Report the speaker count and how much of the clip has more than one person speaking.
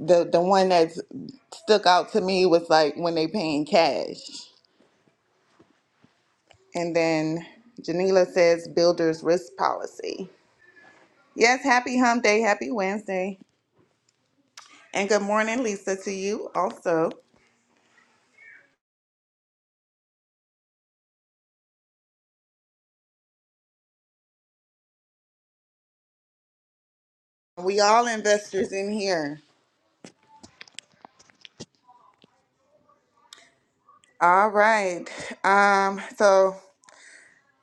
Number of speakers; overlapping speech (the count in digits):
1, no overlap